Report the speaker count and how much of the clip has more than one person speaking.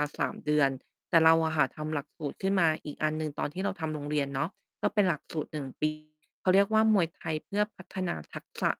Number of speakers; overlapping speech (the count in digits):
1, no overlap